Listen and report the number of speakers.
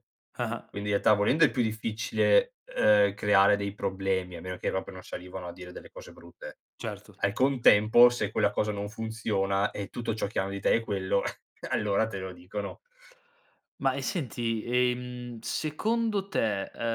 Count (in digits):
2